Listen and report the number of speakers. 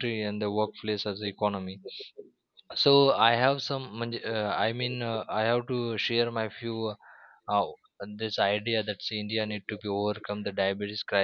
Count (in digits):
1